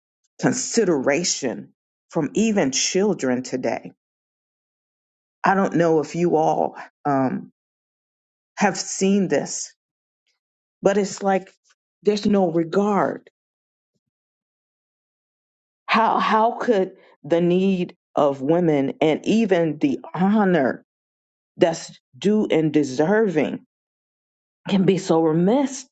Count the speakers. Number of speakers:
one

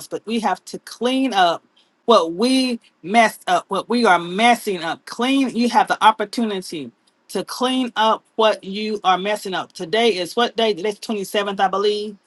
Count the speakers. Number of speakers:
one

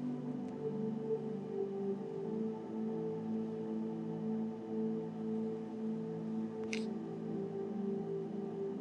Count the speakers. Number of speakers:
zero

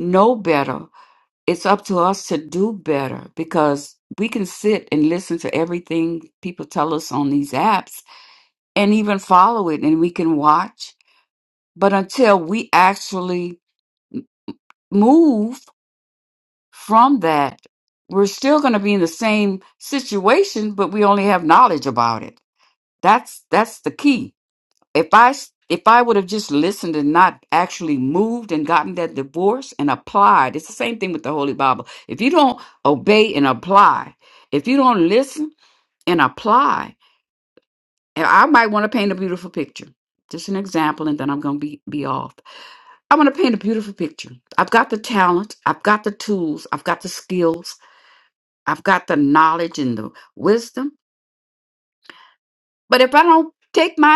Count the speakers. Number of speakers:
one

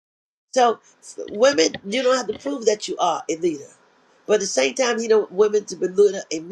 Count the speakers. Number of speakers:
one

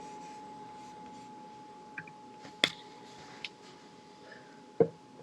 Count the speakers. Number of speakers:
zero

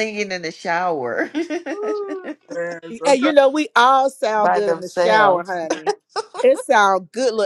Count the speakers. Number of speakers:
three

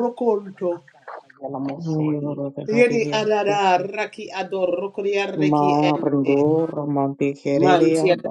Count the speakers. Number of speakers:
three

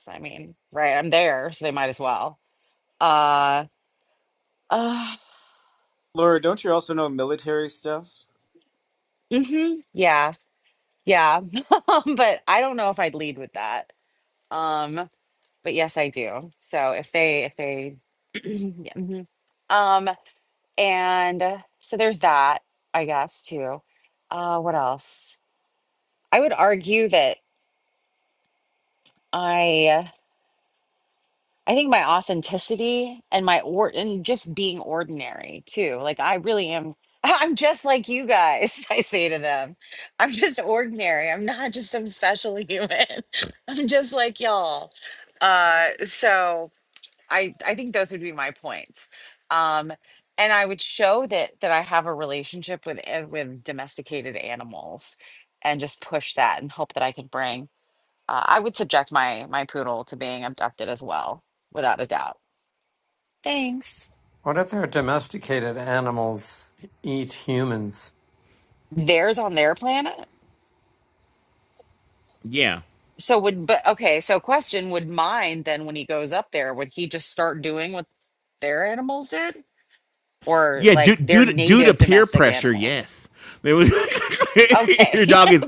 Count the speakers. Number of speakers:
four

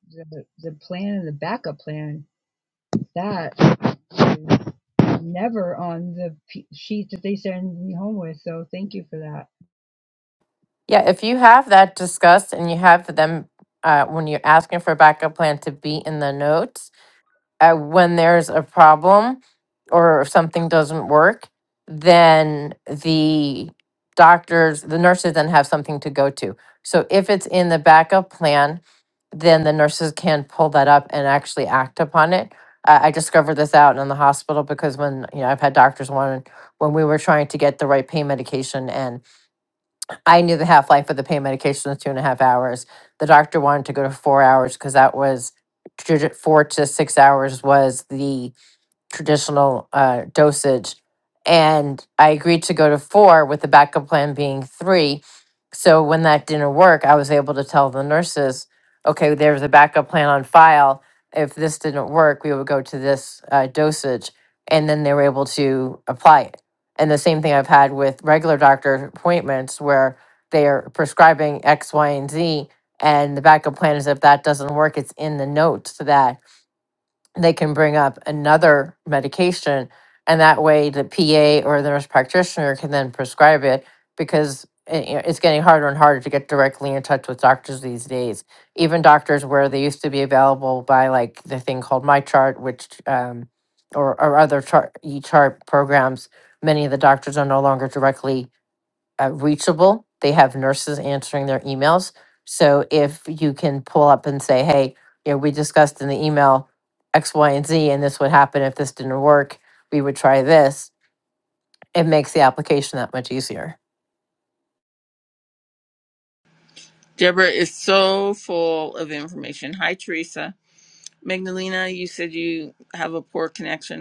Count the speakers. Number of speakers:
three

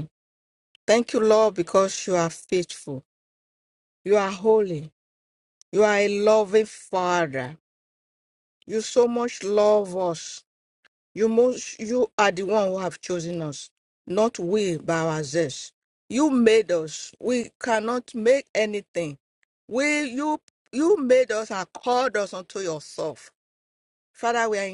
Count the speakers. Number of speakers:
one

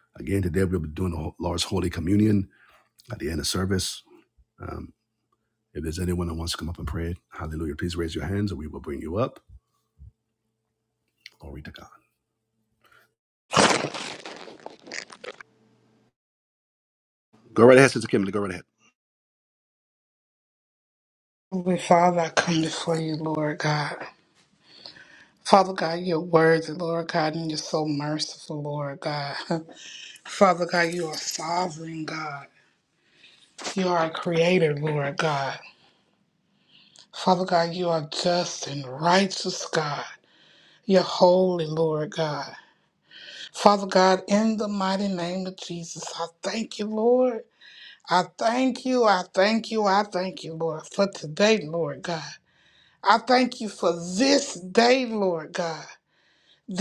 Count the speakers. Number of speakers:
two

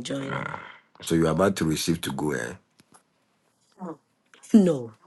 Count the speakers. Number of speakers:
two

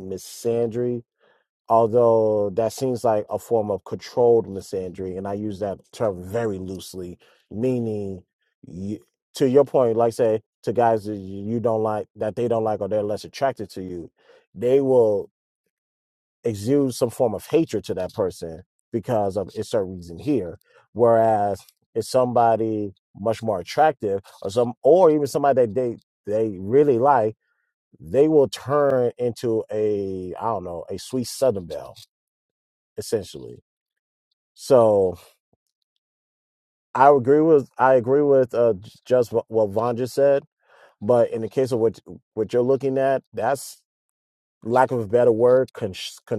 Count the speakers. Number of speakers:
one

